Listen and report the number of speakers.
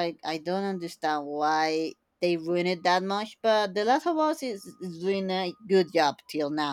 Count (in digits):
1